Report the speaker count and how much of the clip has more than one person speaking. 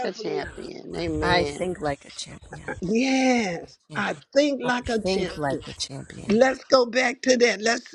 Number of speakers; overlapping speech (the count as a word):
three, about 29%